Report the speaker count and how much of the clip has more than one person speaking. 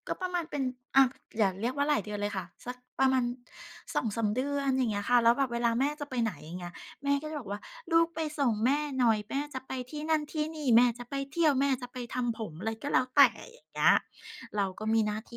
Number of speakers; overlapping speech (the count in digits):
1, no overlap